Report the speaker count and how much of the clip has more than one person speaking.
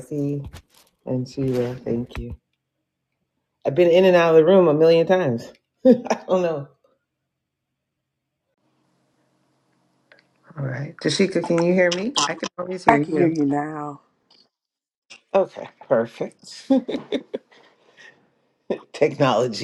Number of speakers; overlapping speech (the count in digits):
2, about 2%